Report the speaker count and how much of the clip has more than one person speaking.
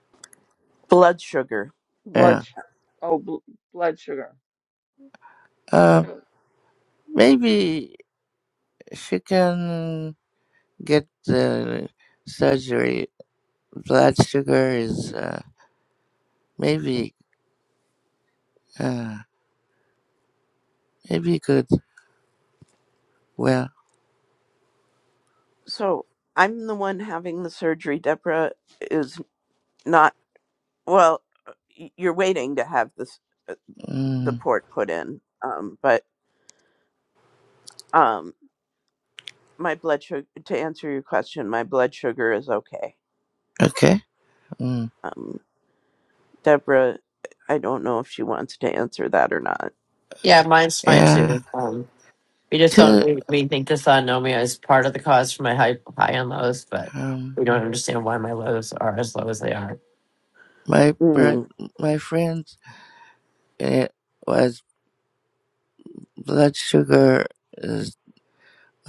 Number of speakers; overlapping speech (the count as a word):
four, about 3%